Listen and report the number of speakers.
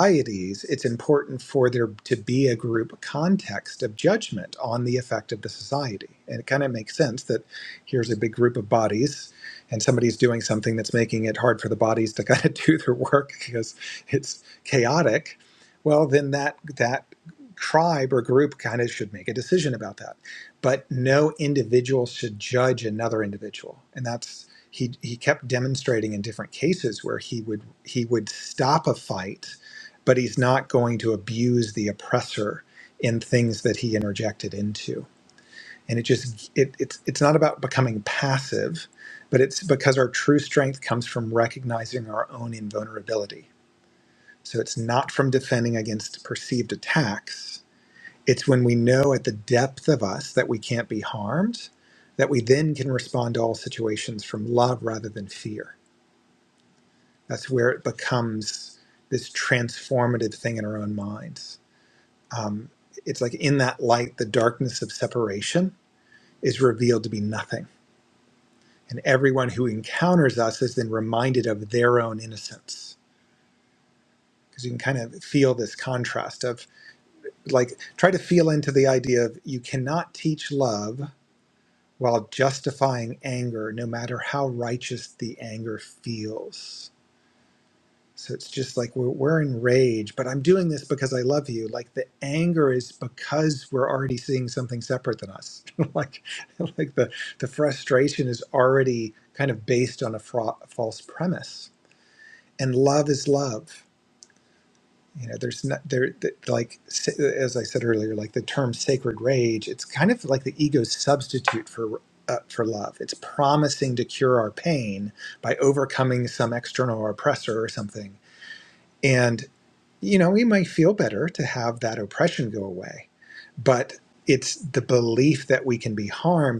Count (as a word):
one